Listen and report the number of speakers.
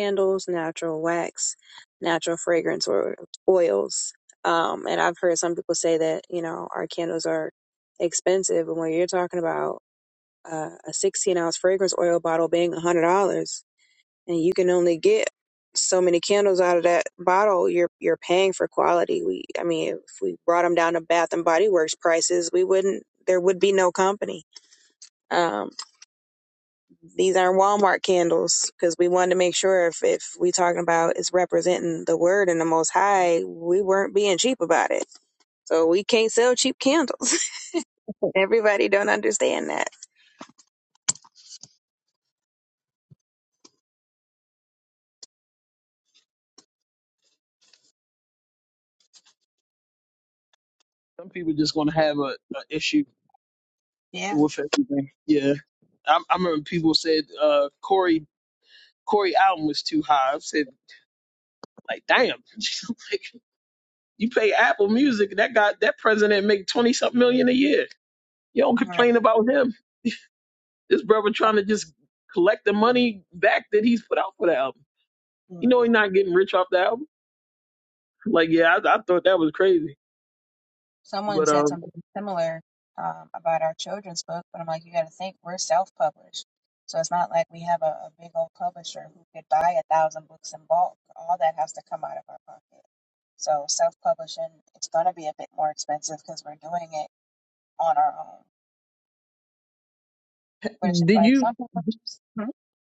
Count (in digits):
2